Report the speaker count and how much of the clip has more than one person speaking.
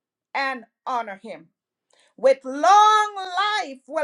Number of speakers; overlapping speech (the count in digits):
1, no overlap